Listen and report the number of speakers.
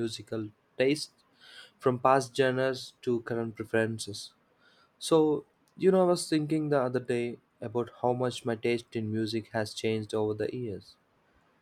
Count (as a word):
one